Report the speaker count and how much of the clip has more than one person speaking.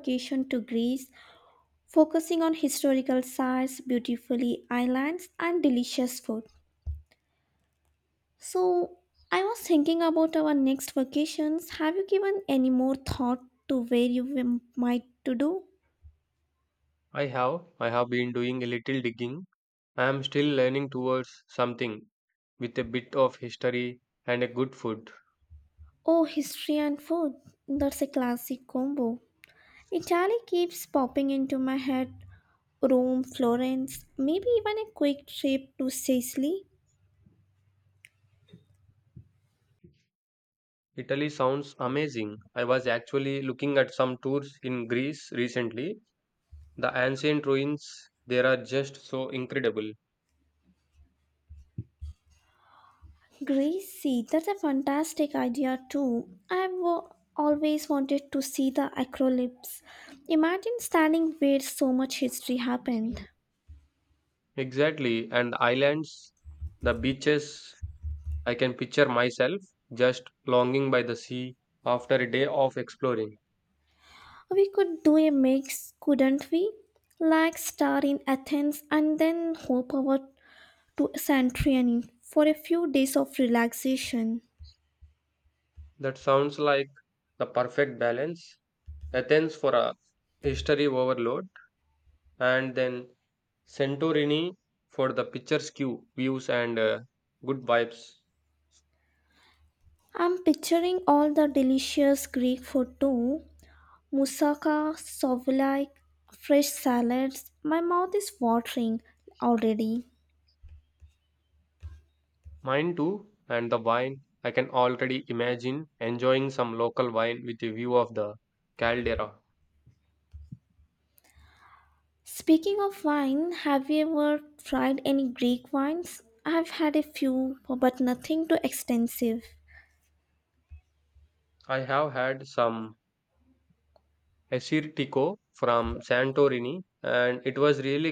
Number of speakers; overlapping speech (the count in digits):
2, no overlap